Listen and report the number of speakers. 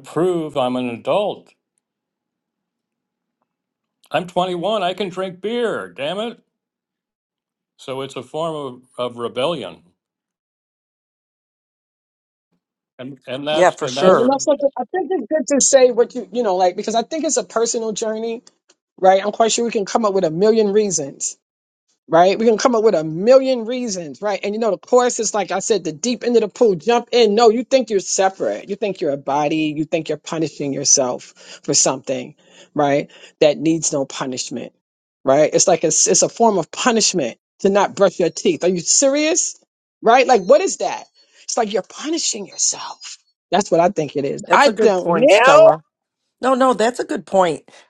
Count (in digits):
3